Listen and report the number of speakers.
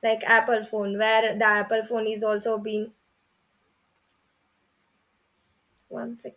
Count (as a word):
one